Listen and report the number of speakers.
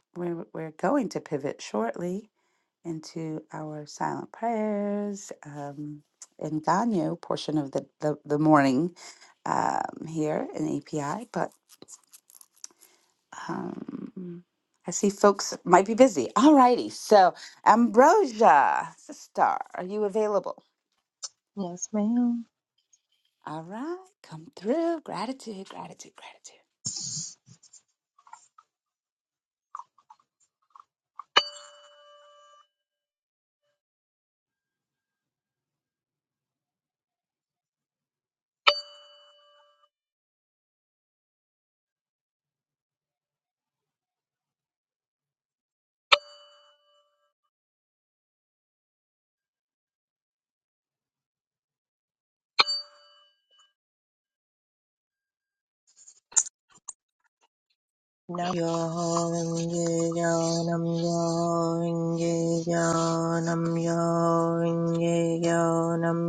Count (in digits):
2